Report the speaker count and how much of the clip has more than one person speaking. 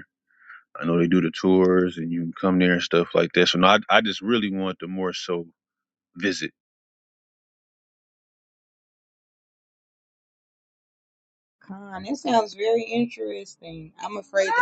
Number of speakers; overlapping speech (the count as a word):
two, no overlap